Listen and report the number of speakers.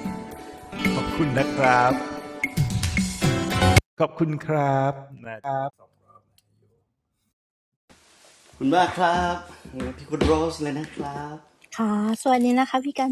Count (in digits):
3